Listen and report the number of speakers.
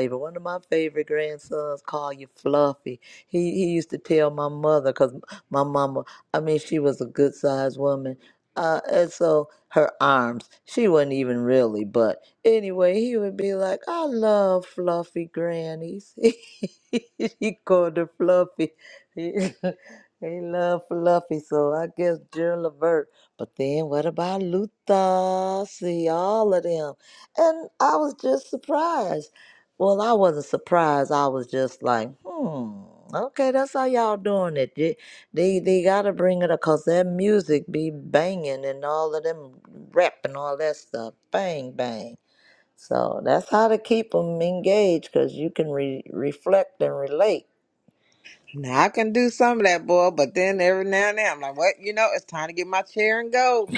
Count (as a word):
two